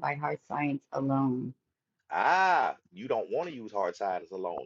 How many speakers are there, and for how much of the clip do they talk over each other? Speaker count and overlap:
2, no overlap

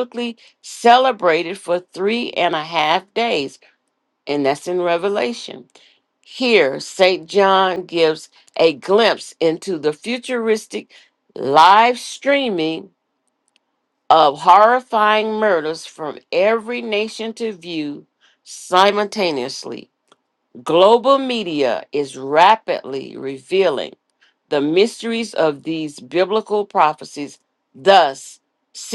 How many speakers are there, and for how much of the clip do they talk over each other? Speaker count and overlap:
1, no overlap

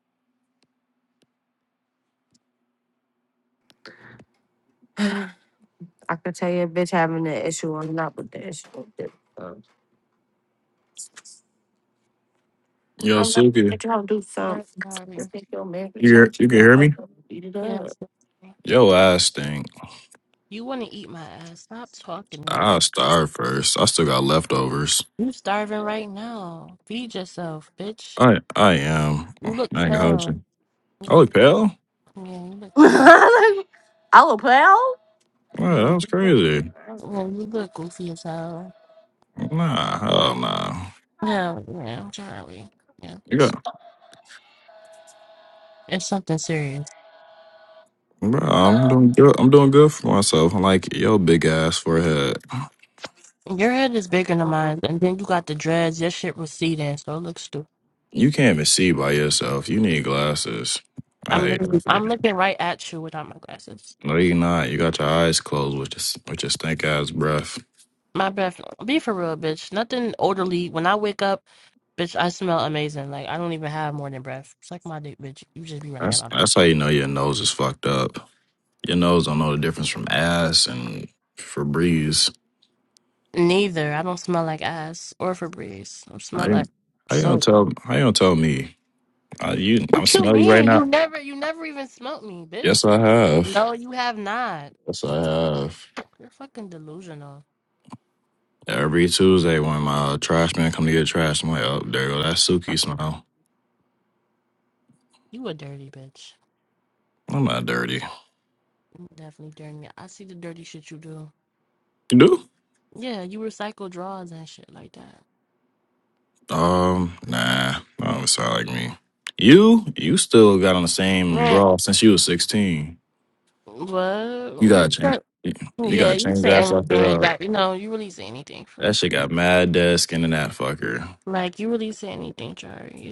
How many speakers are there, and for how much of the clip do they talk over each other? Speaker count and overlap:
3, about 8%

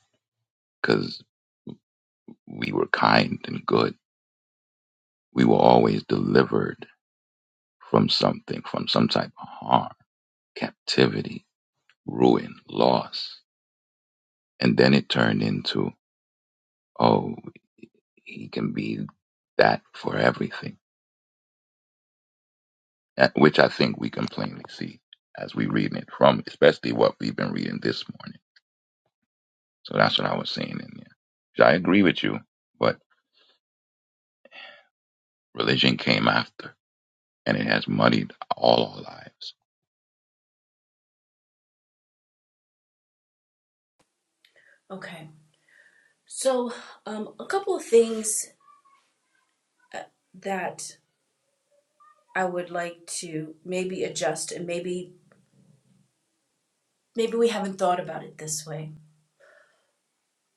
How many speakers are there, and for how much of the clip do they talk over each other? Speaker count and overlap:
2, no overlap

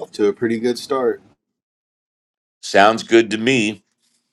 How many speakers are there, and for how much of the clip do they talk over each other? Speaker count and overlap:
2, no overlap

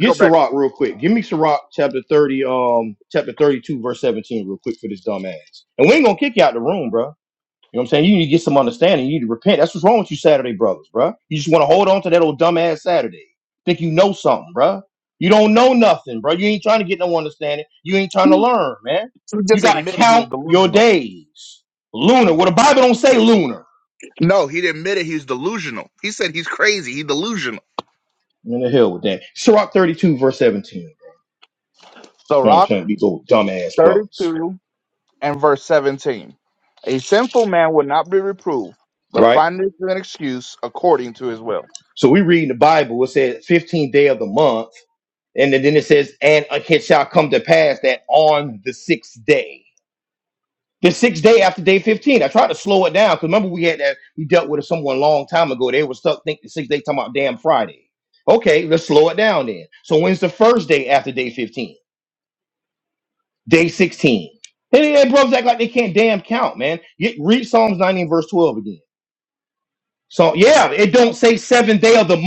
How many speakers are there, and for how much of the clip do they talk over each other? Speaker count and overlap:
2, about 4%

